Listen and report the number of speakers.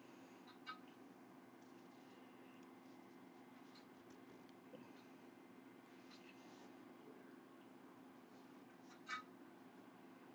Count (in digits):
0